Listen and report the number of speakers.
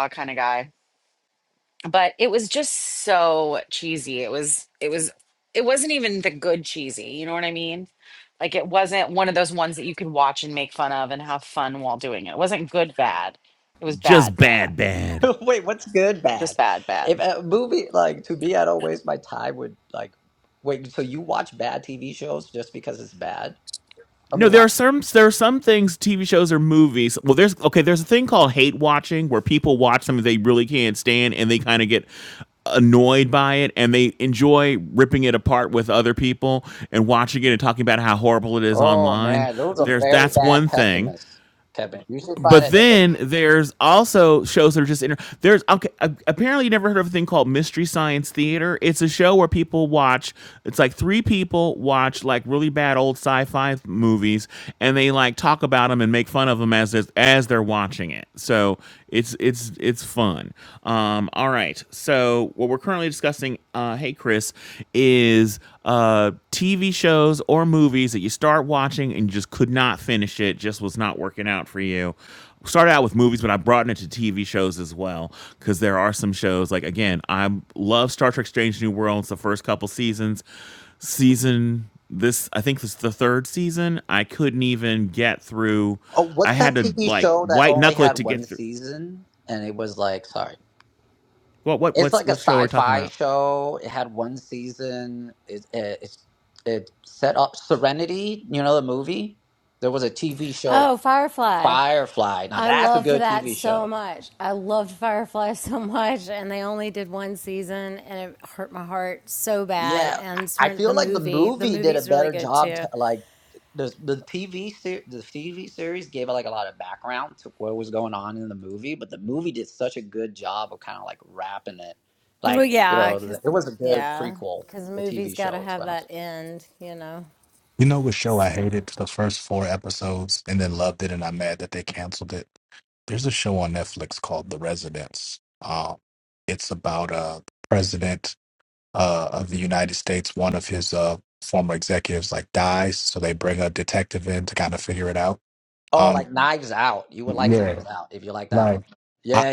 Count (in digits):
5